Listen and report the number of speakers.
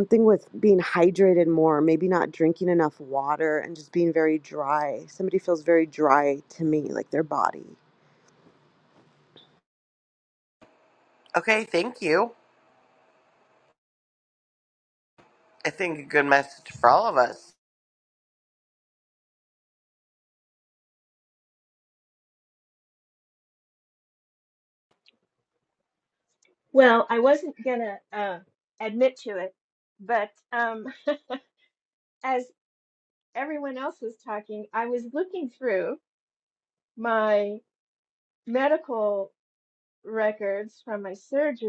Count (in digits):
3